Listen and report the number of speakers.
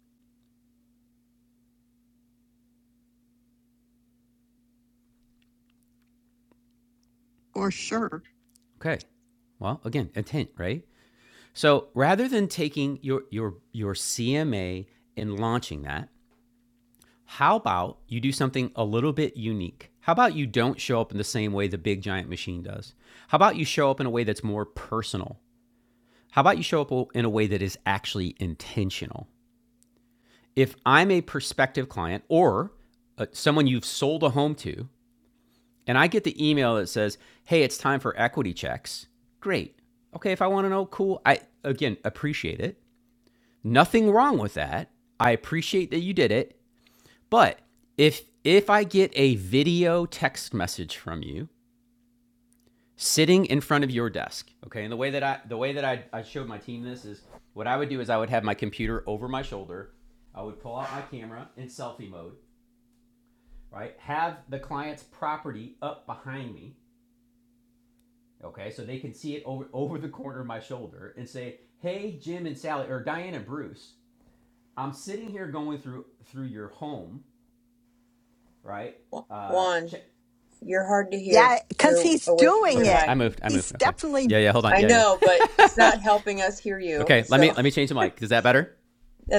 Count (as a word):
three